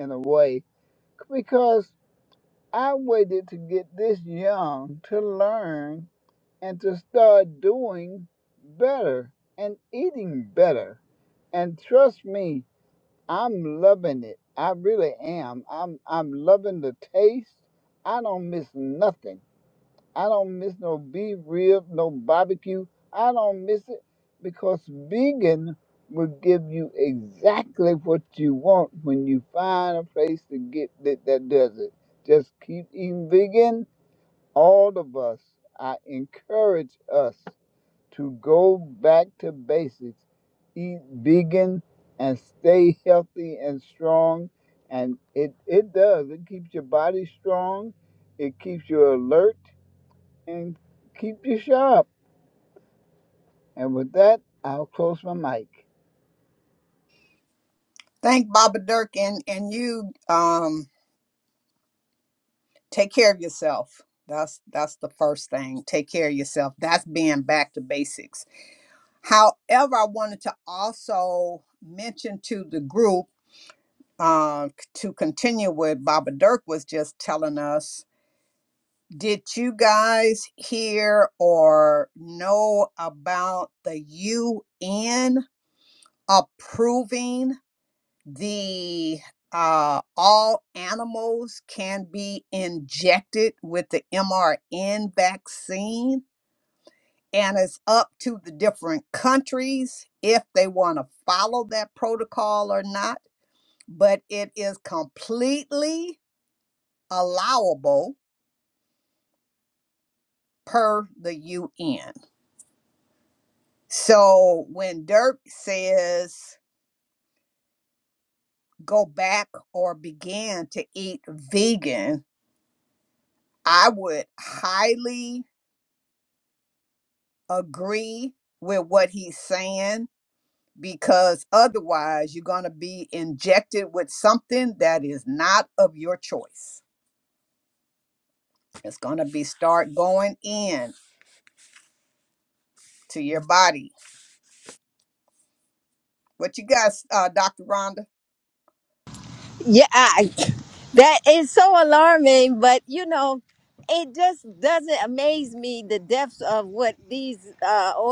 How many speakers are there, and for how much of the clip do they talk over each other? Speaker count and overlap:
three, no overlap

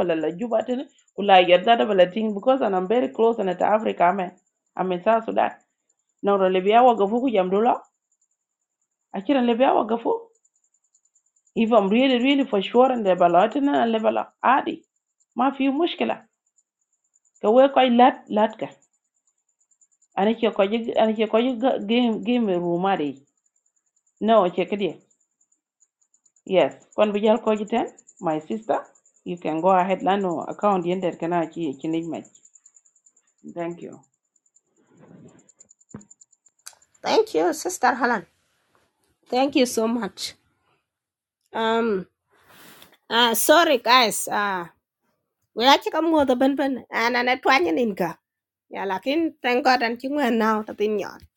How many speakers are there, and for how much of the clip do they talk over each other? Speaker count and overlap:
two, no overlap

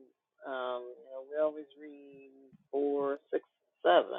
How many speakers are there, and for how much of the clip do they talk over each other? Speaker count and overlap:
one, no overlap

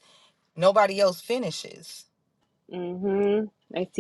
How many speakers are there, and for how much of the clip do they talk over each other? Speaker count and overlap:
two, no overlap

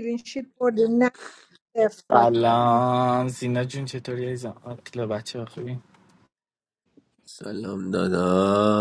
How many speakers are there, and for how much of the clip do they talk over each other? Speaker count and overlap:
three, about 2%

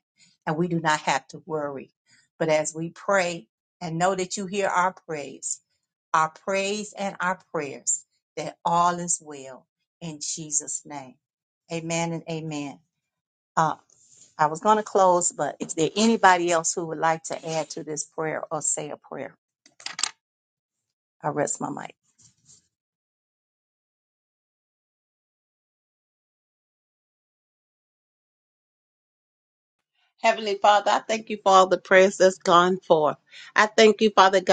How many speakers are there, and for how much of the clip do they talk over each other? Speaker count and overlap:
two, no overlap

